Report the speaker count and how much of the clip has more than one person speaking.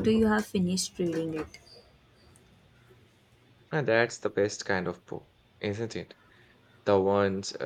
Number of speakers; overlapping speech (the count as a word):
two, no overlap